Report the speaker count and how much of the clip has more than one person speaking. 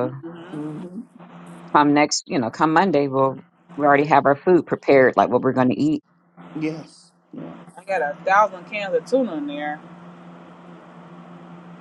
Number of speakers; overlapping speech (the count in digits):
3, about 3%